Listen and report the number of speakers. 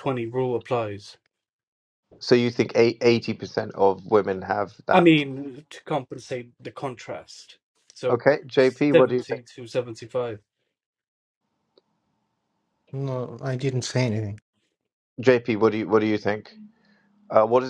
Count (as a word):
three